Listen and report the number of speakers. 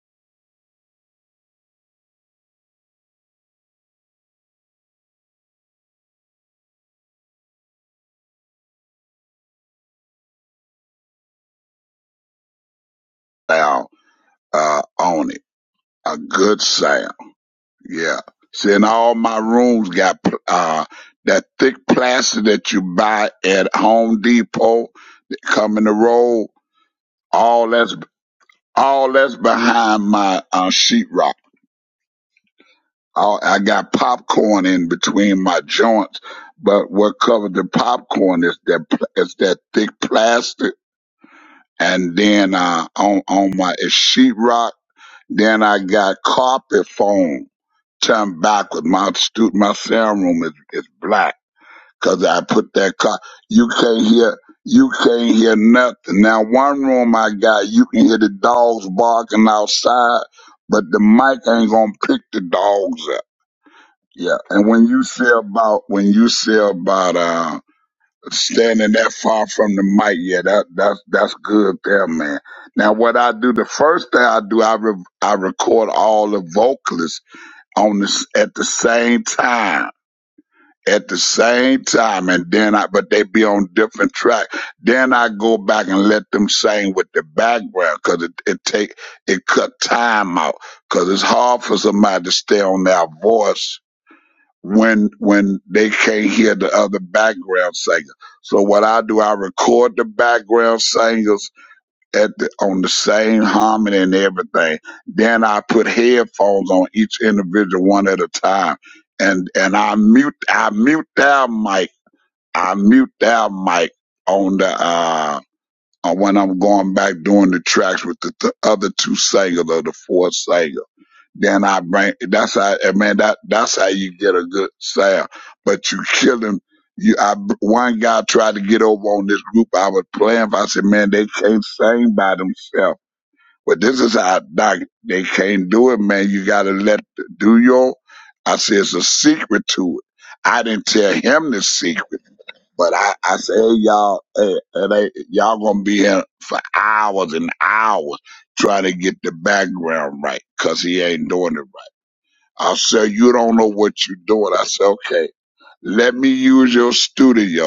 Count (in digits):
1